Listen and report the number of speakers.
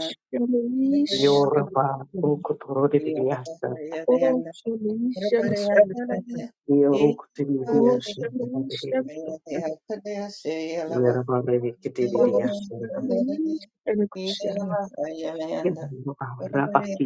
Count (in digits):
3